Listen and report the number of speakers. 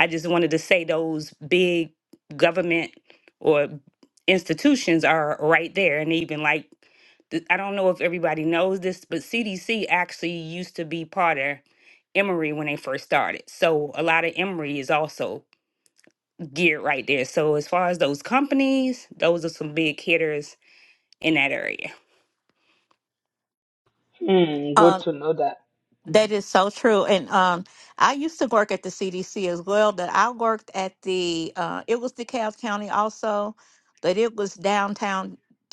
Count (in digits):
3